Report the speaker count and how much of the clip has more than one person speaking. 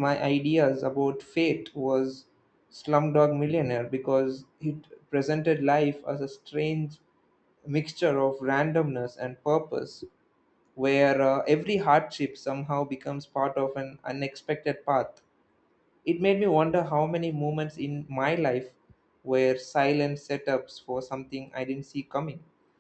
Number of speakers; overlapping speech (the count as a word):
one, no overlap